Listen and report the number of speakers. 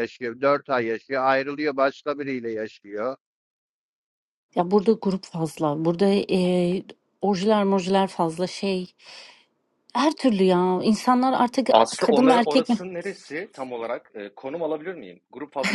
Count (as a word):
three